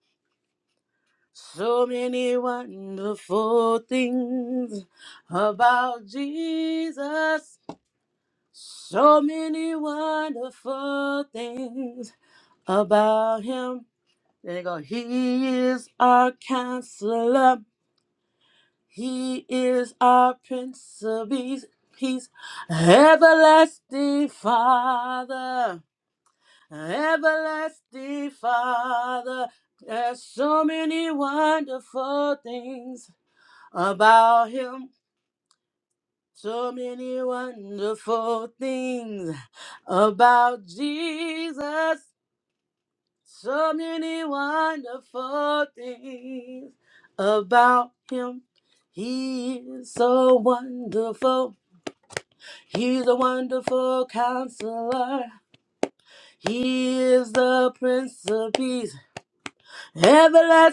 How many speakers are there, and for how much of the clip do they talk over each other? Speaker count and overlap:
one, no overlap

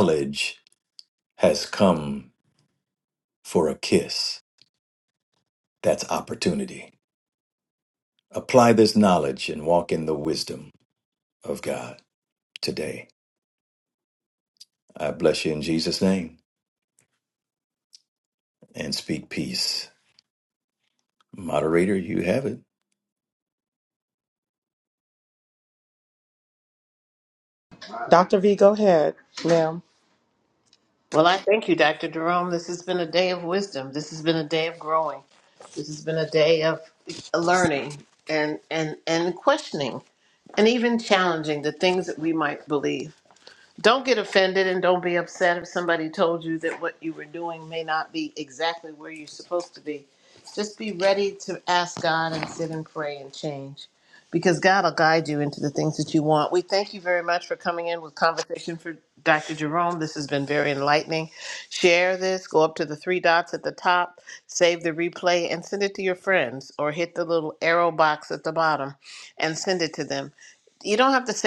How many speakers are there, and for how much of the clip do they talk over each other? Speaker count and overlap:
three, no overlap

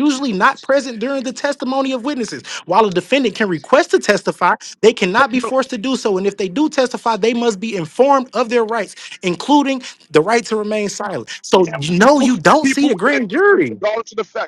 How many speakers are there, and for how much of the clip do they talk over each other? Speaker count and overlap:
two, about 14%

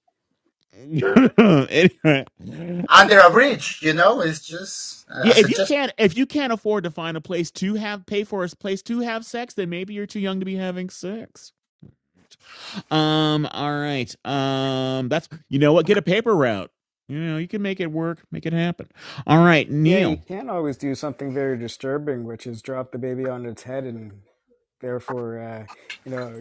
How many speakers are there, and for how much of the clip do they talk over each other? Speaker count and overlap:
three, about 3%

